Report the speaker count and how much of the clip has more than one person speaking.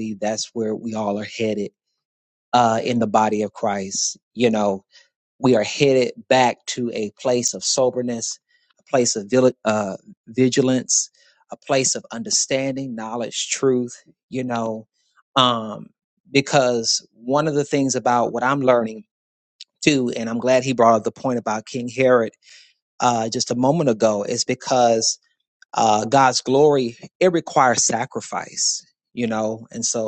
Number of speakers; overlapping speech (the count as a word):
one, no overlap